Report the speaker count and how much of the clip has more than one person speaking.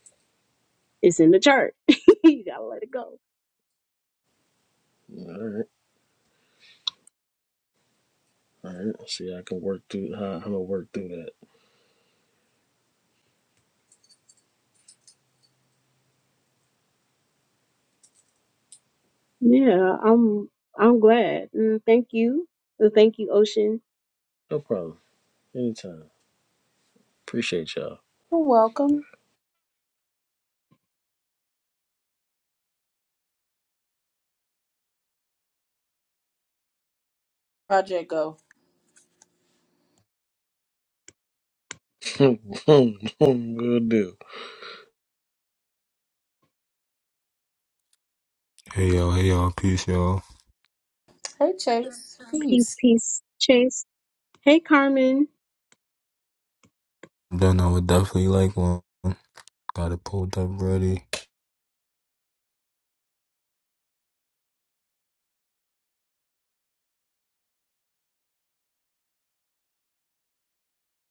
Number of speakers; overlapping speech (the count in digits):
4, under 1%